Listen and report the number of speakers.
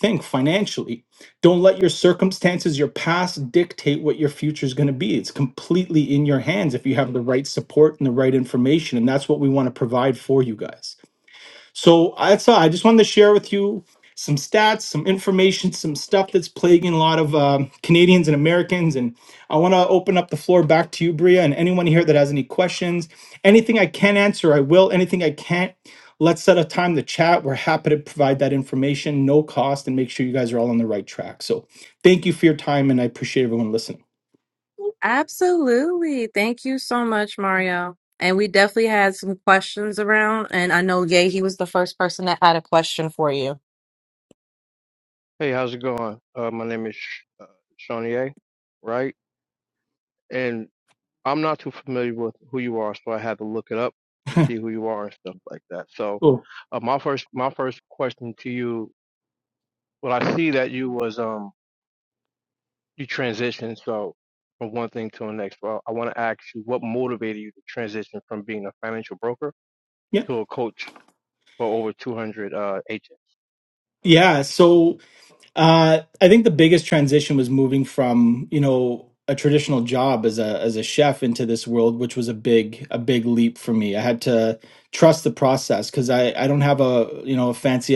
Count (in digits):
3